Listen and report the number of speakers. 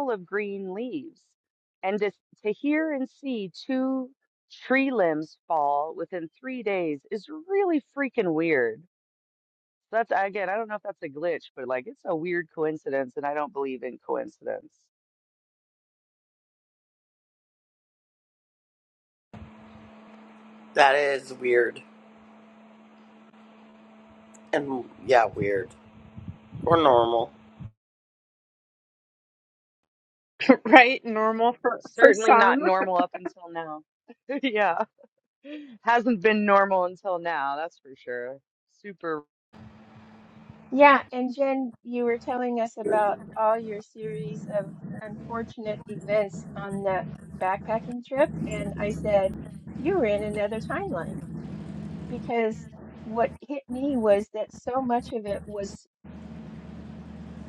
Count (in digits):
4